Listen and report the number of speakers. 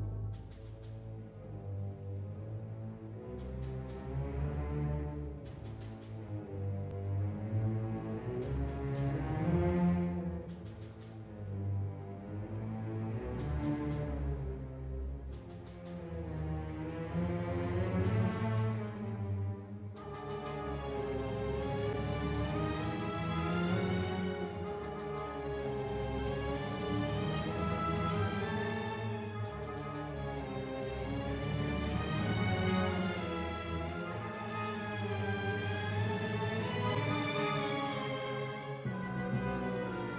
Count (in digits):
0